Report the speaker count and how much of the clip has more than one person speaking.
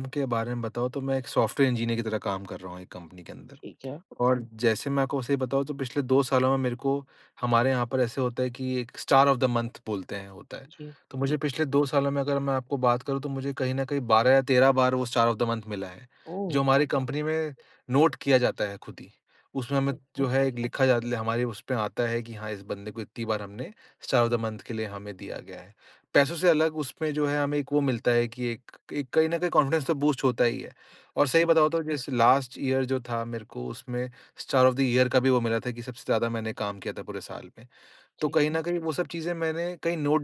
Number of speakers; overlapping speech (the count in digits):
2, about 3%